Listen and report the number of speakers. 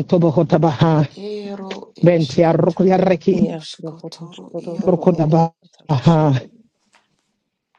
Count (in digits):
3